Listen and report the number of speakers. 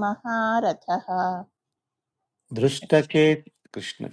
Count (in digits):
2